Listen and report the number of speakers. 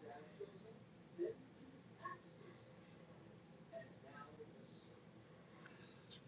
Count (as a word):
zero